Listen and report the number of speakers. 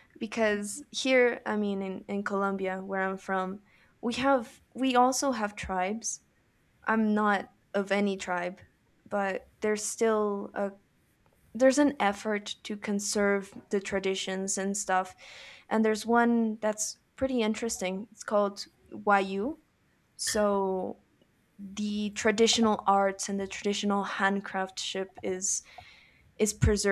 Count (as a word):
one